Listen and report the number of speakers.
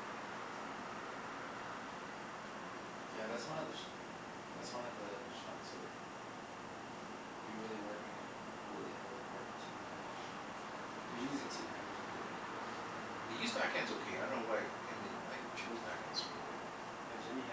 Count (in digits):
2